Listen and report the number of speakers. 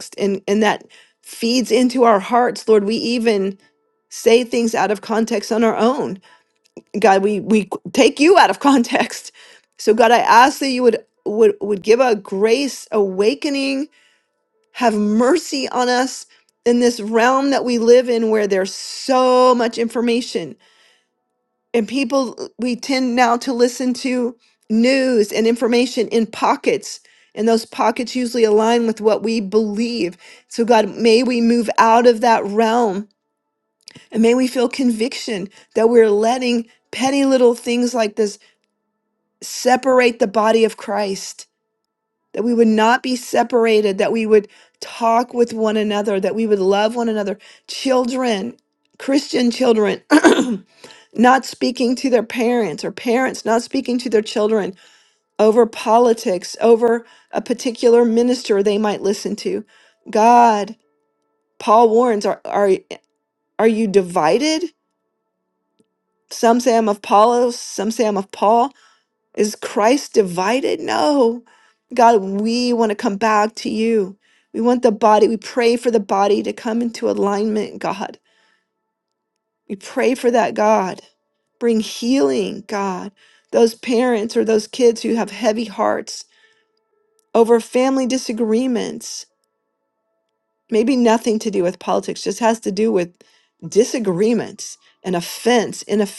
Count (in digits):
1